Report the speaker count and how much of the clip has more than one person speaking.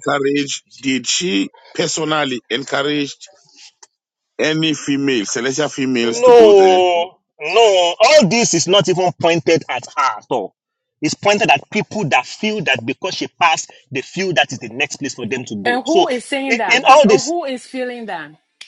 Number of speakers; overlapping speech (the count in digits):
3, about 10%